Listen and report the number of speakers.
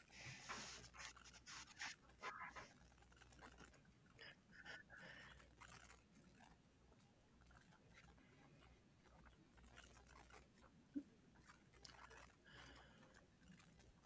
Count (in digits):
0